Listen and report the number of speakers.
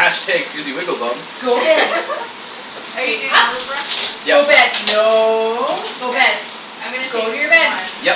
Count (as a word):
three